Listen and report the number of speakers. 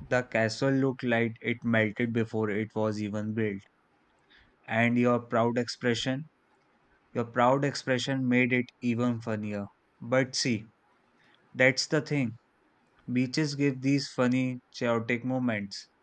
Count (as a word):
one